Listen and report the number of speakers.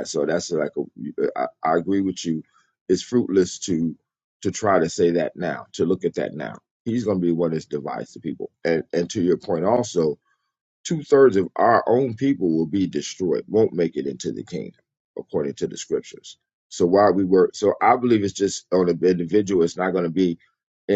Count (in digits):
1